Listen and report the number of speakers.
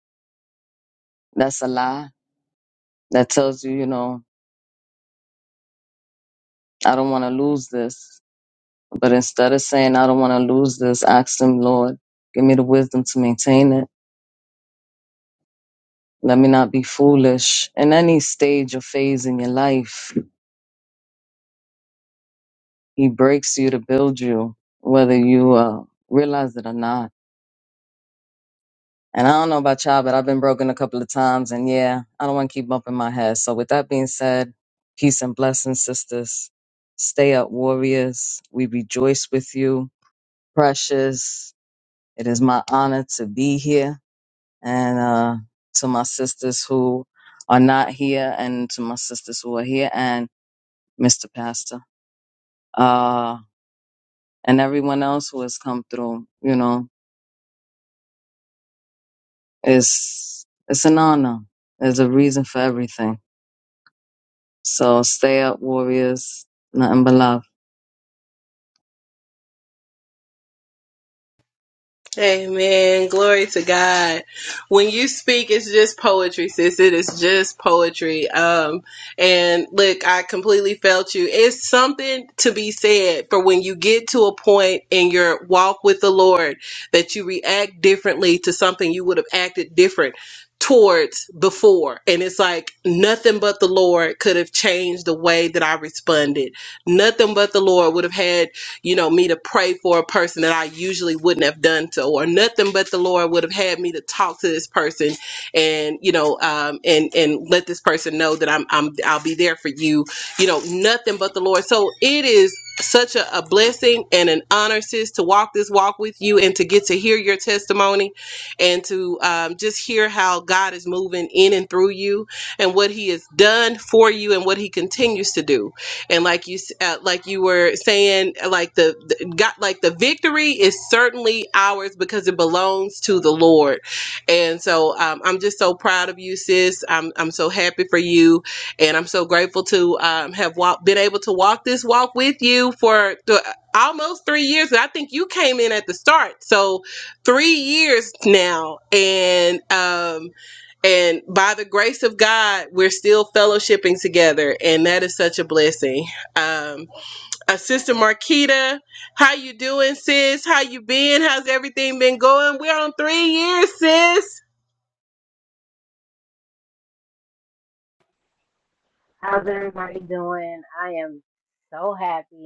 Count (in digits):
3